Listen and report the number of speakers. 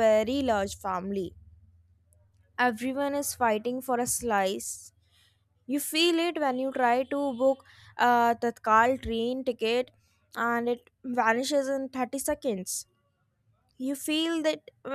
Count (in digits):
1